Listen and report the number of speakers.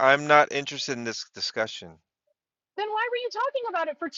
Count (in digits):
2